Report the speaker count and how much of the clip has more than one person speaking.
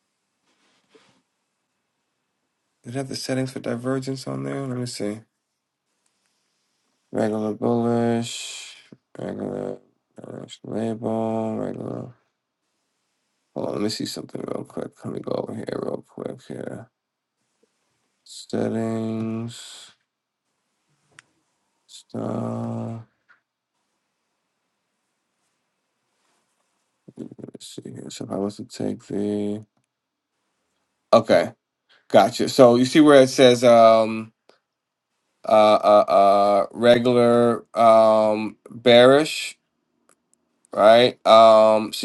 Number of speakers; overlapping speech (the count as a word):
one, no overlap